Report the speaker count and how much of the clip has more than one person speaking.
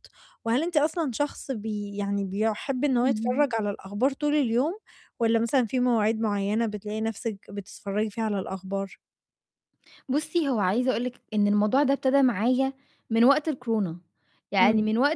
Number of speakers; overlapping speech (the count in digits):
2, about 5%